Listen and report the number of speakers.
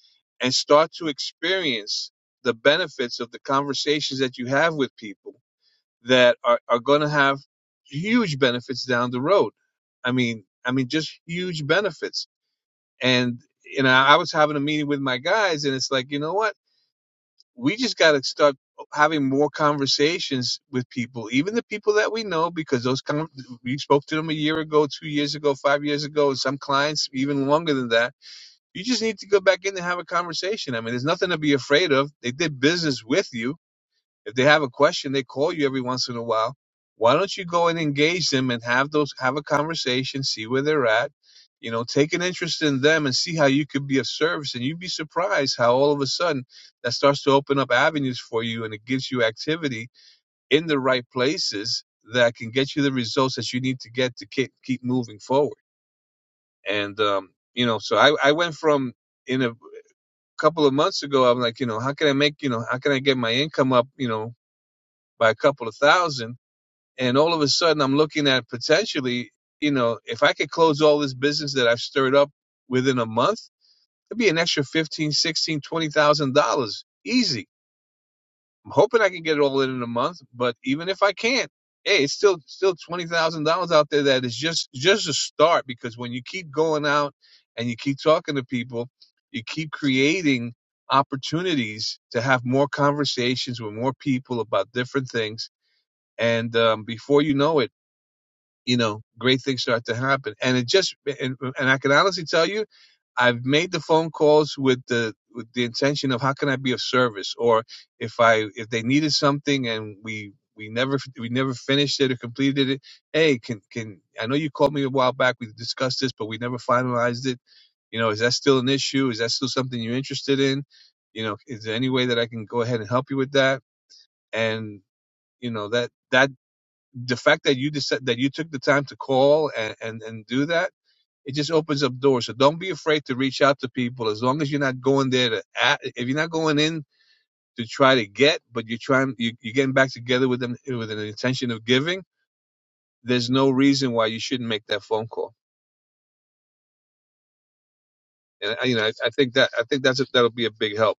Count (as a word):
one